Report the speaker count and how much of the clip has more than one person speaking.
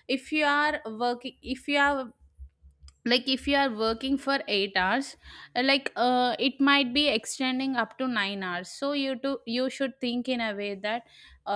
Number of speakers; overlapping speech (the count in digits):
1, no overlap